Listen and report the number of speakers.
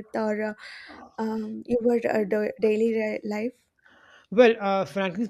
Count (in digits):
2